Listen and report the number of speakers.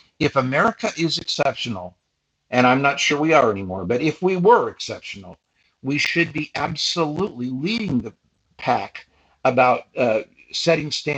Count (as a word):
one